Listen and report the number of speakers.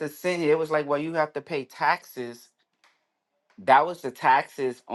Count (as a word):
one